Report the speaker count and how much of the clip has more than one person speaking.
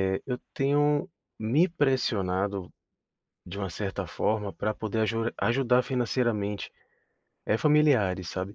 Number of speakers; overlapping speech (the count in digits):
1, no overlap